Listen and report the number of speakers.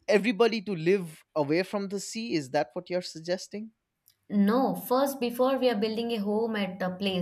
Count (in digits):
2